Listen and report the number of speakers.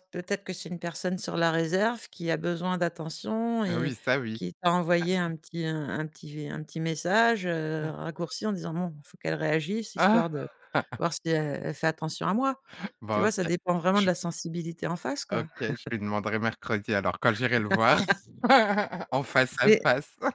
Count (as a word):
two